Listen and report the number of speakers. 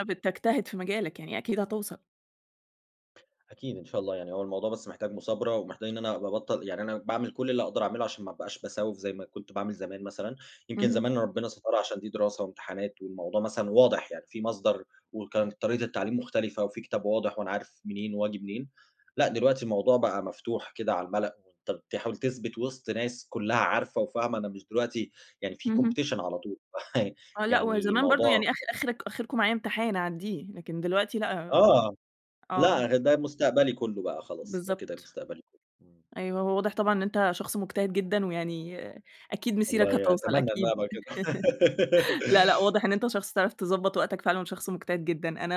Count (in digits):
2